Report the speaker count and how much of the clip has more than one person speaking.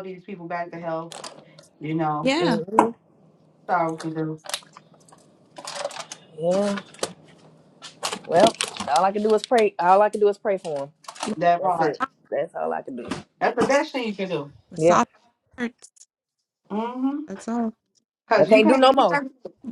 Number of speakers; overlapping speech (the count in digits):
3, about 8%